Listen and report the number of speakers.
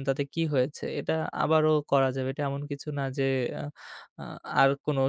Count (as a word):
one